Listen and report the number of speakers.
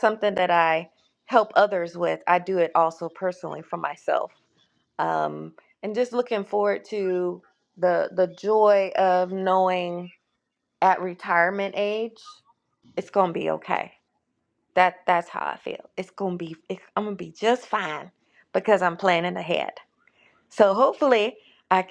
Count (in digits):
1